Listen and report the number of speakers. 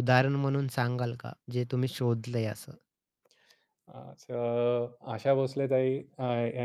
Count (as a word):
two